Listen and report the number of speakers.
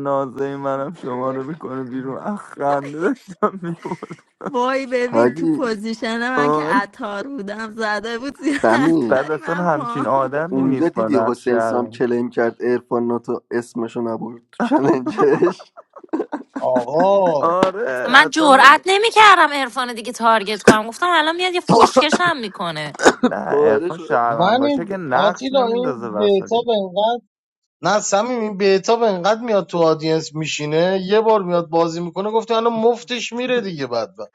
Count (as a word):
five